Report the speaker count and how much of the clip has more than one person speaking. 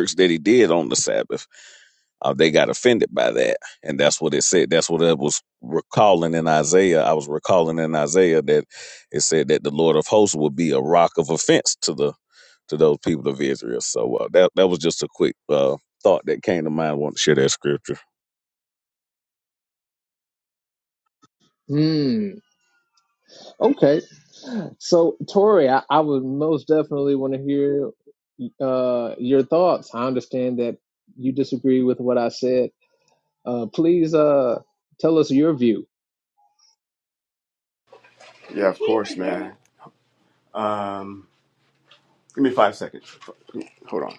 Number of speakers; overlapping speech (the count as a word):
three, no overlap